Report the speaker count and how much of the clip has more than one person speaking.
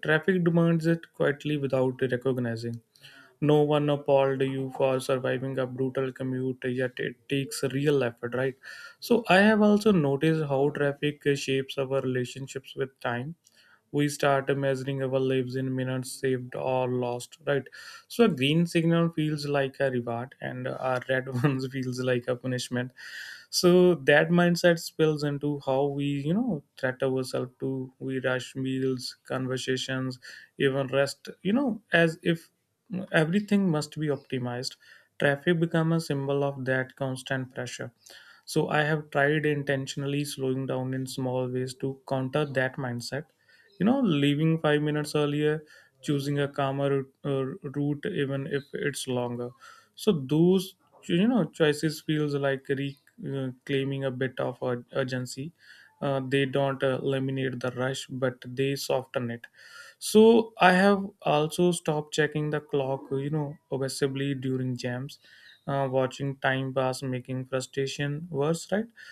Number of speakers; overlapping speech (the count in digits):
1, no overlap